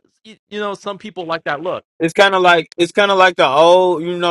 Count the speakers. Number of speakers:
2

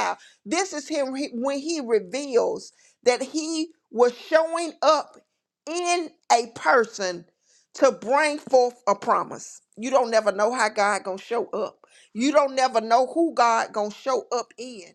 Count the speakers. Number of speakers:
1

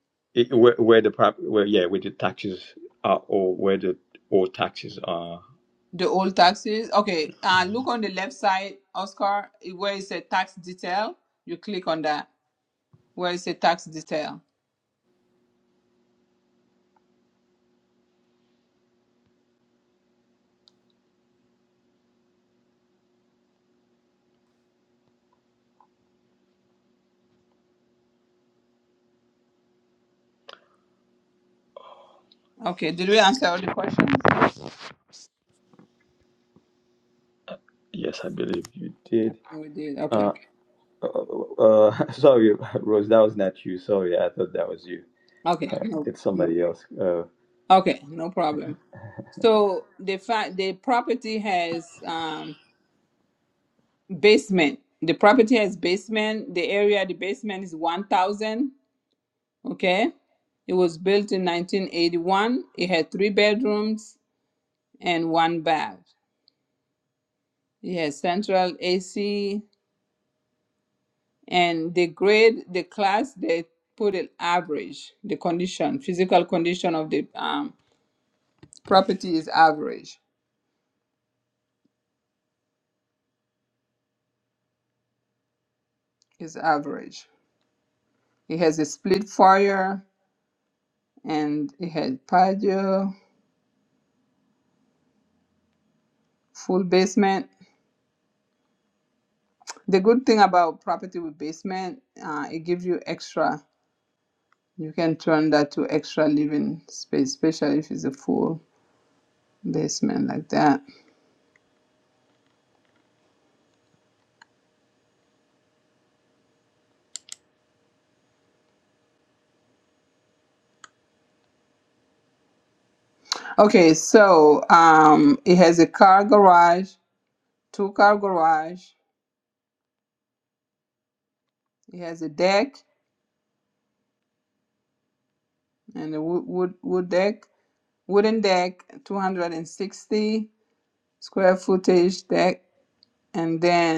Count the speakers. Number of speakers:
2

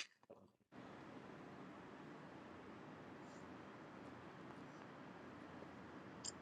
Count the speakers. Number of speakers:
0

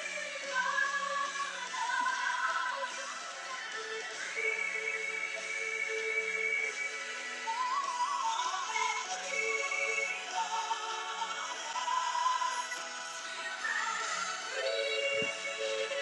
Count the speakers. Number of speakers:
0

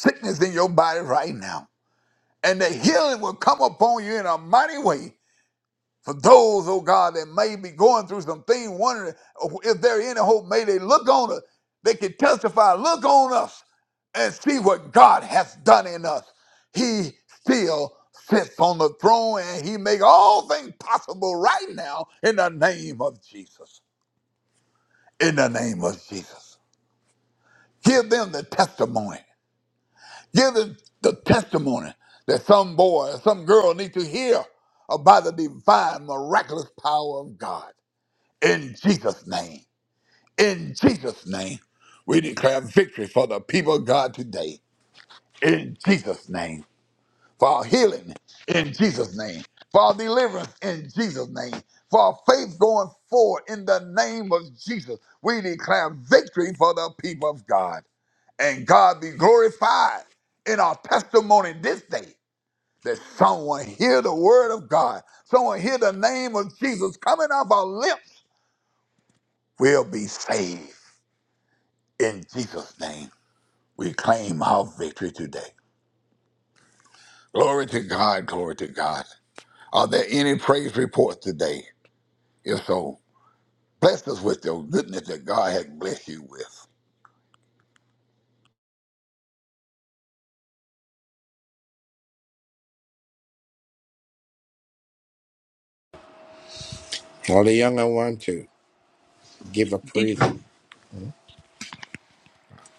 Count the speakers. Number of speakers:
2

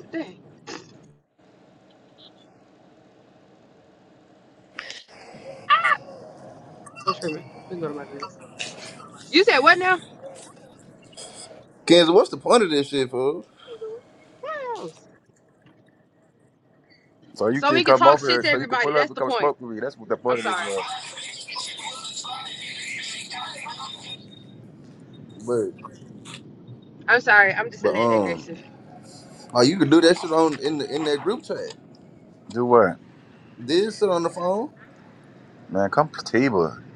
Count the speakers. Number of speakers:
3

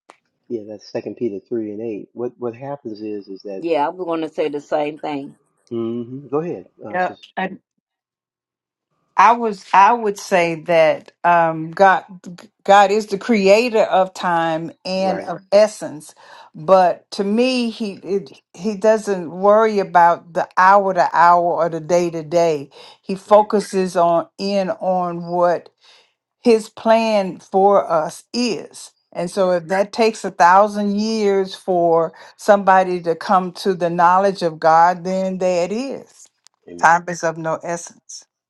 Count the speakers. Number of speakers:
3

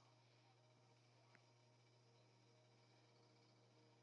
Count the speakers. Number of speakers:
0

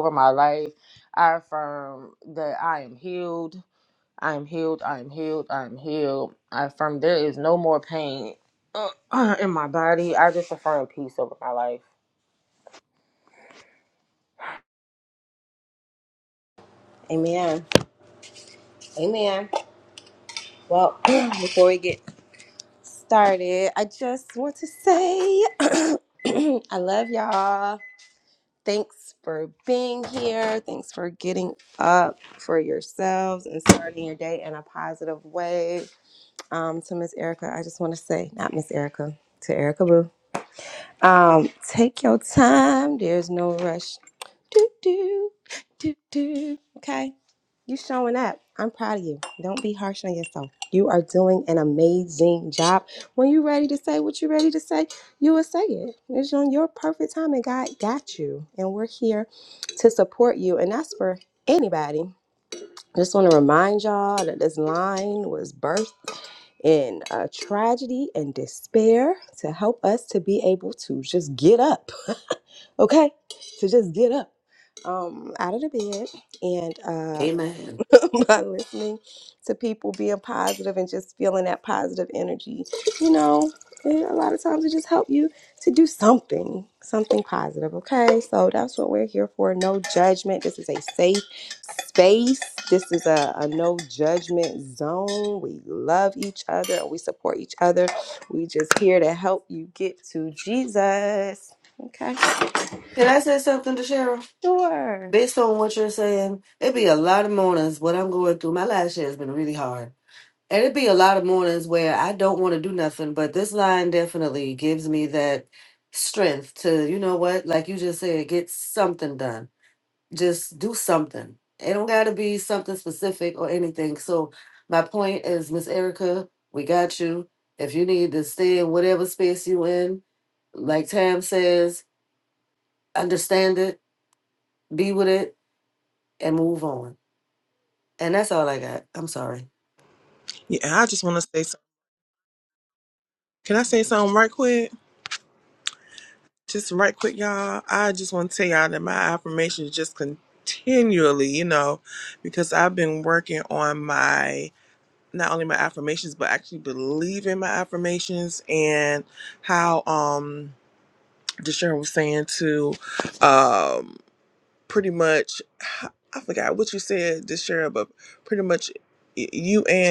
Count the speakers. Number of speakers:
4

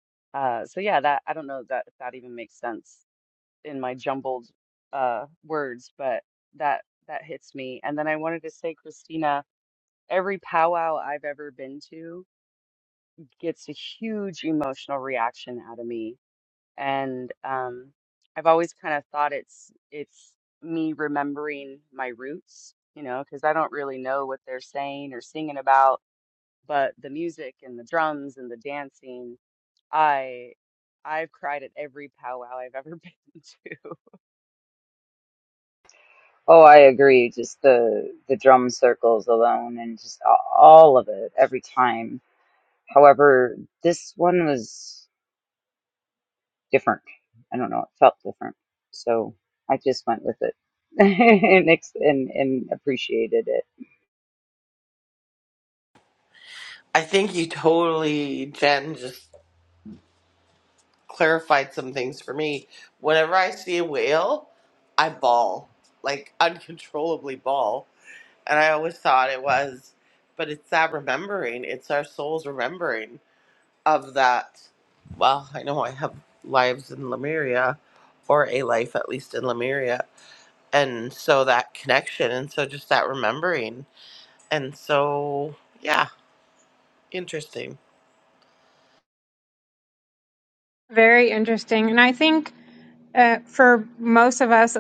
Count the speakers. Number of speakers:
4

